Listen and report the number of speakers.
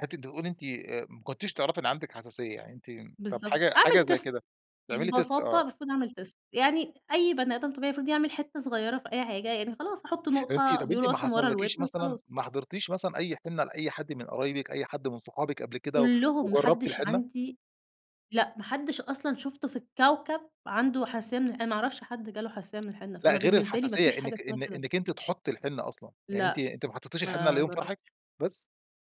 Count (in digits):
2